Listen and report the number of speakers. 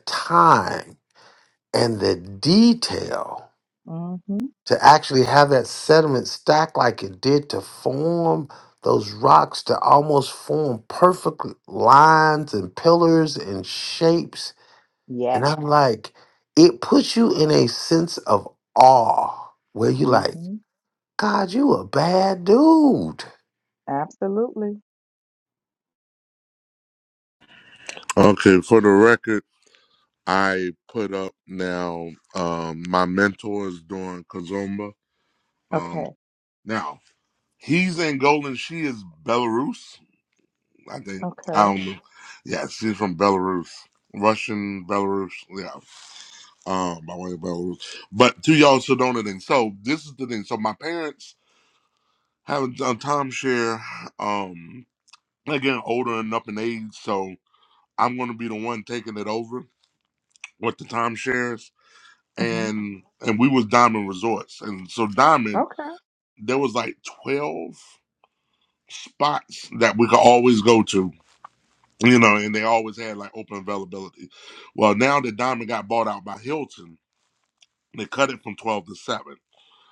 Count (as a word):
three